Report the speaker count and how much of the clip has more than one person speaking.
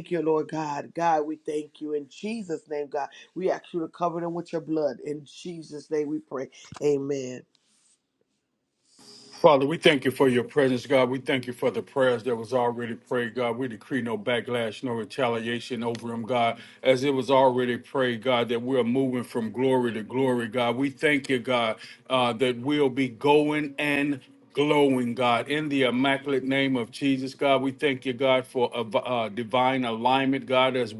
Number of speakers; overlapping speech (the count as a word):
two, no overlap